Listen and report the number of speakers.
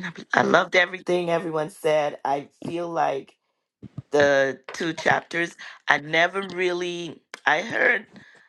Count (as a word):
one